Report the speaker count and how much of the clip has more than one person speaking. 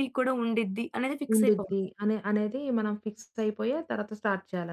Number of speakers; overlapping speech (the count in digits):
2, about 8%